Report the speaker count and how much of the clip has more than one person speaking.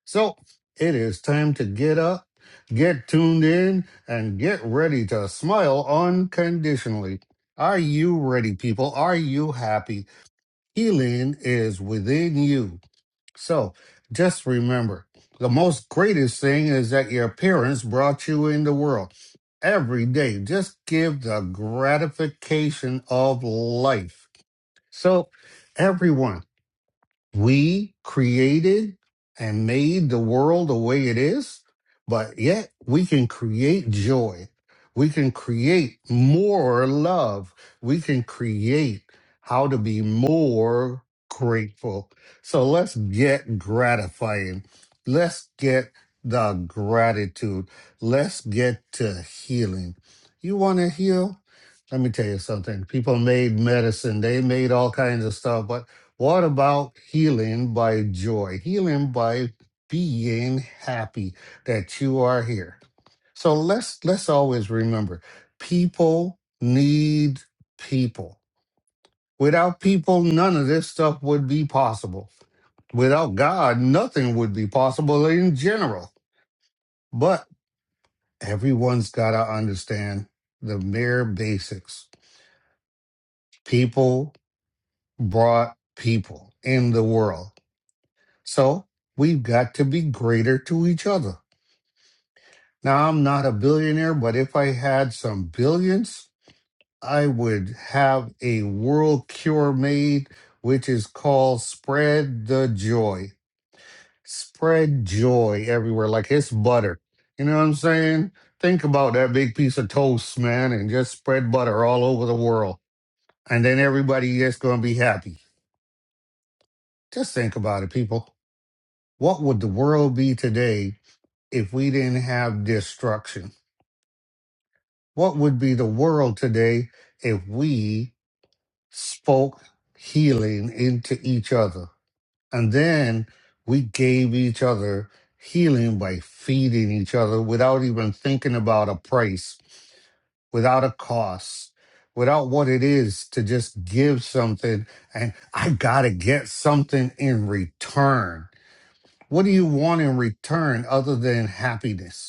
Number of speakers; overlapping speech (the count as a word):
one, no overlap